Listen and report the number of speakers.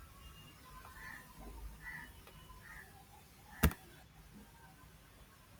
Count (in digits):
0